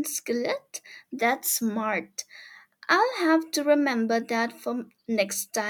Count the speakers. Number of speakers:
1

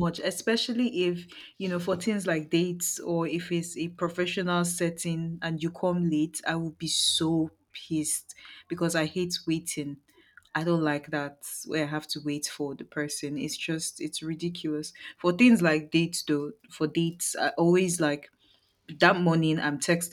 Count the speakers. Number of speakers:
1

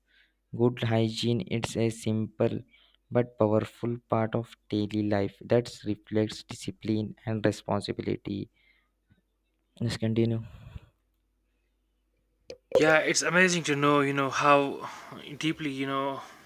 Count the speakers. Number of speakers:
2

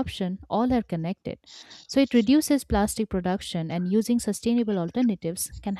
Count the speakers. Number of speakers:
1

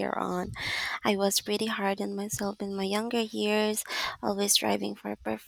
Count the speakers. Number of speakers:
1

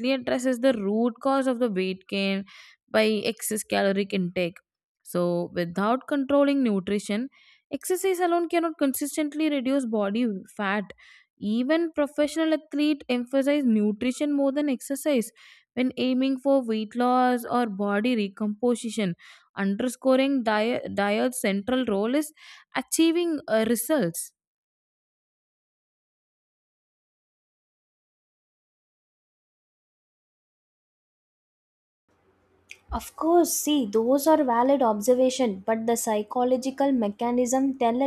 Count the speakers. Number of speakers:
2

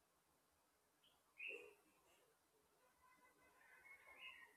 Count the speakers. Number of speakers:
0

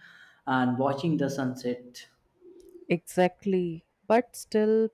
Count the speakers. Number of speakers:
2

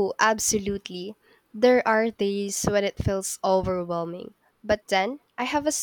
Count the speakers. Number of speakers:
1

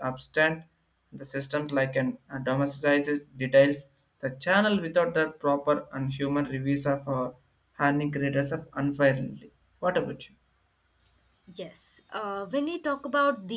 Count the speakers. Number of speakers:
2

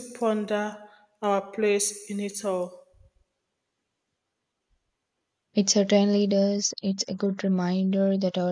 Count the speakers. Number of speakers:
2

